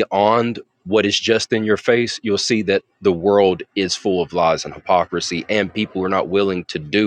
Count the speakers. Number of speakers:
1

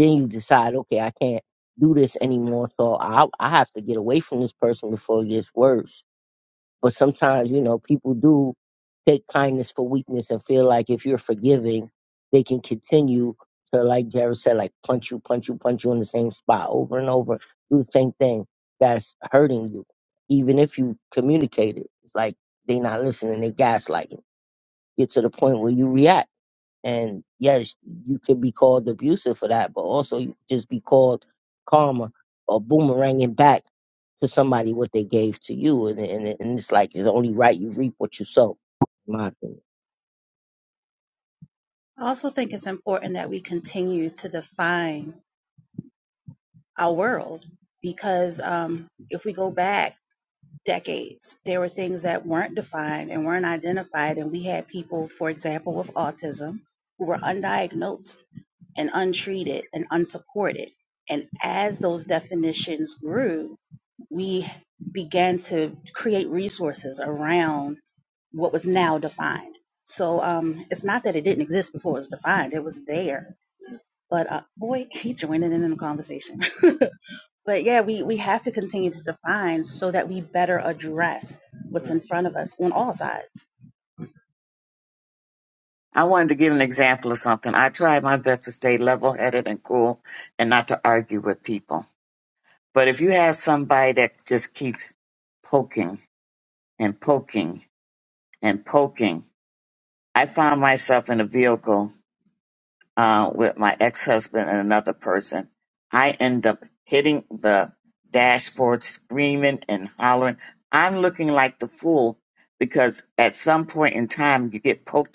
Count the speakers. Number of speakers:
3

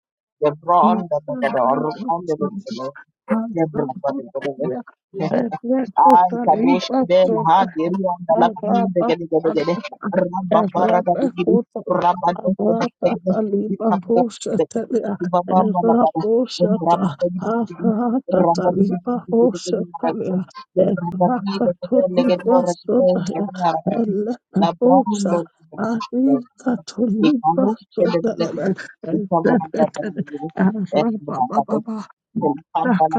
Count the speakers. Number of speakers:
2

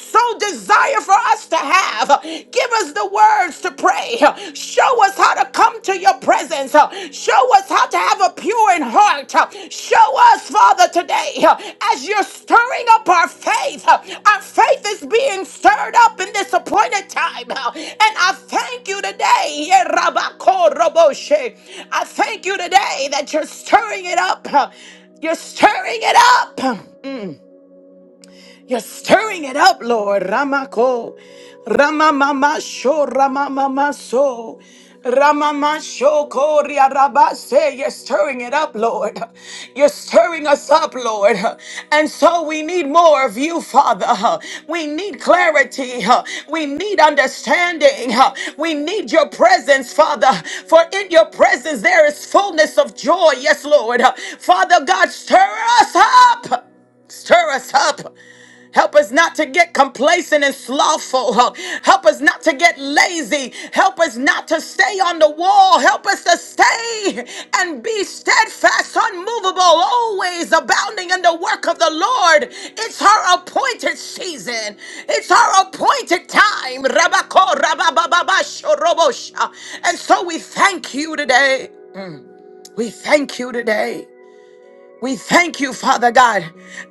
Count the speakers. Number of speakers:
1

